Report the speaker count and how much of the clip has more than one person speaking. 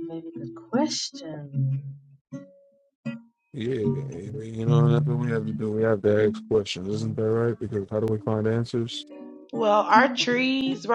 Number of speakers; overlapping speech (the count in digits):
3, no overlap